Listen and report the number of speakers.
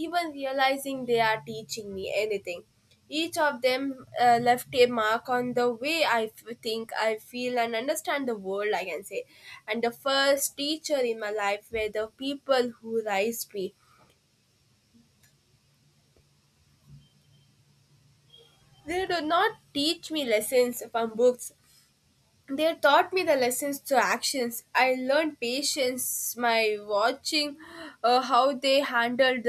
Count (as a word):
one